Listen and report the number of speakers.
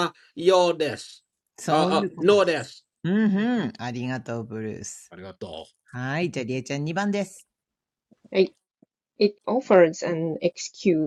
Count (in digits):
3